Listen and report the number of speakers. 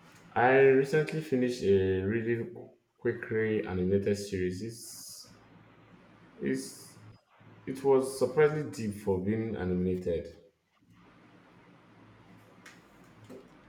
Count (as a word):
one